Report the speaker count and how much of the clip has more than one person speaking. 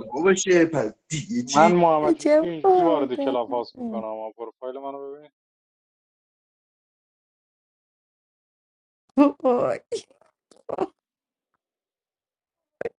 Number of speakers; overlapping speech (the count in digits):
3, about 11%